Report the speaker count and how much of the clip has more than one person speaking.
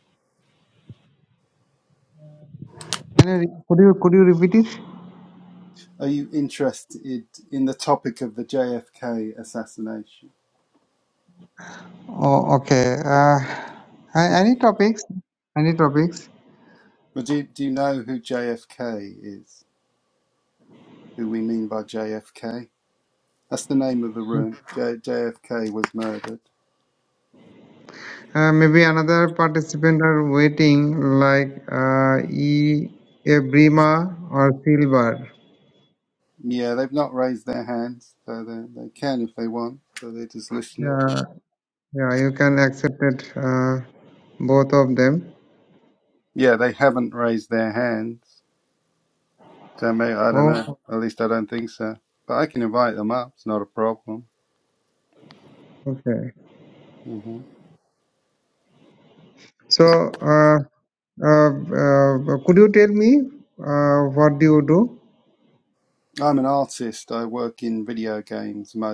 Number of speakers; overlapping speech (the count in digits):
2, about 1%